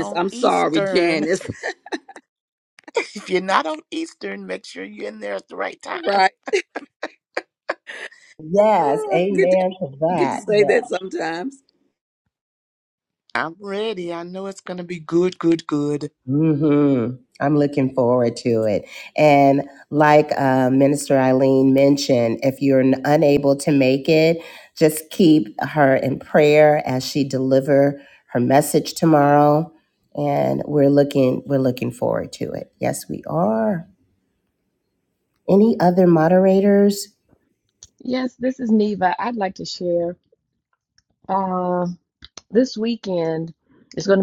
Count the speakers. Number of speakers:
four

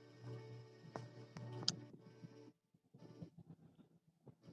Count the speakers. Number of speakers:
zero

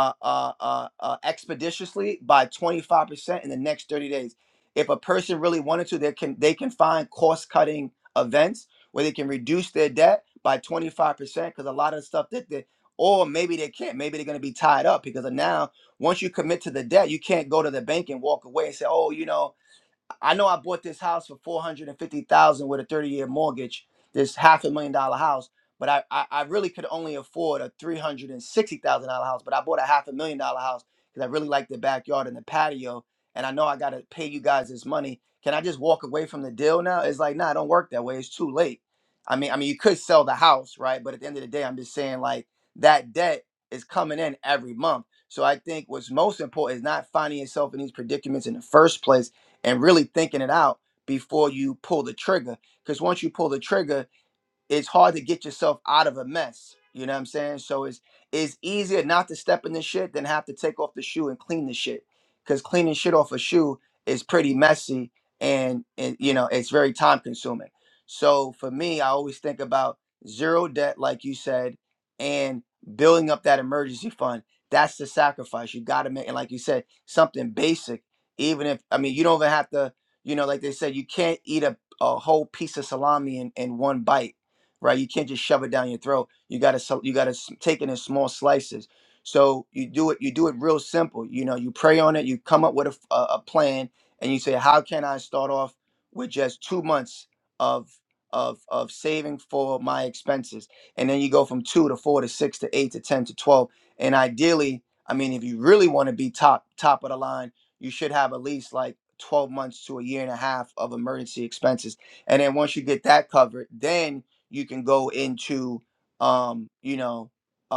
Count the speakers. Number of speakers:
one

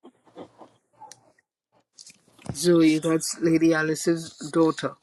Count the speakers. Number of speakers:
one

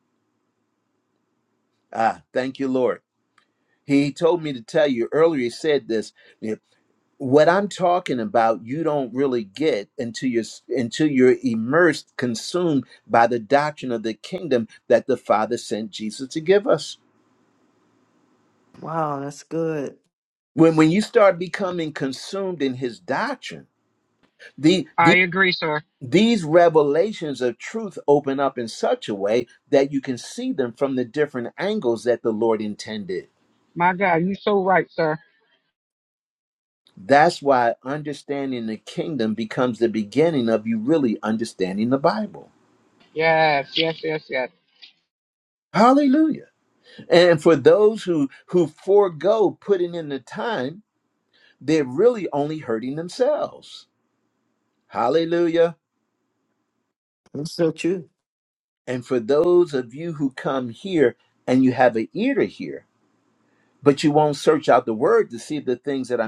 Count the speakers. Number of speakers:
three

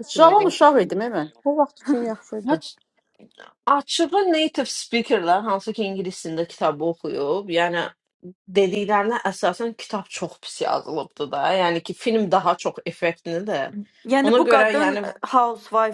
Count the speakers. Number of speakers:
four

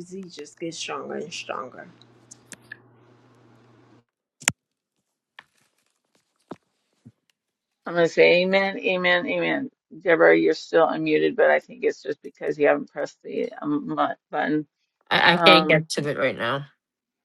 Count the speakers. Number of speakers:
three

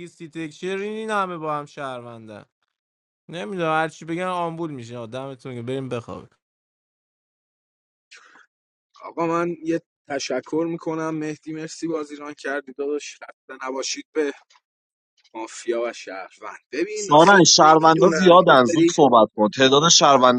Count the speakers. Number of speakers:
three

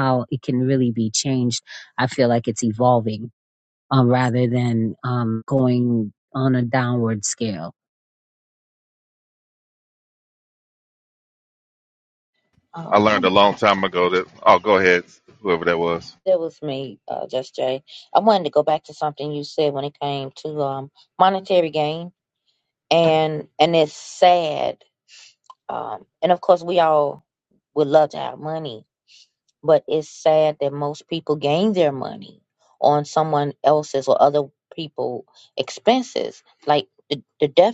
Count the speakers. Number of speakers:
three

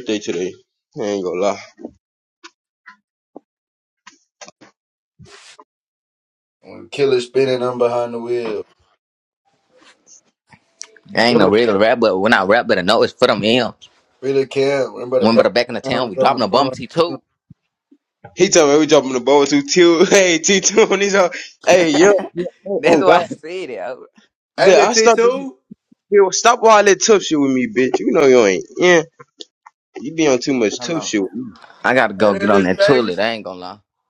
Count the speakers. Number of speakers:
three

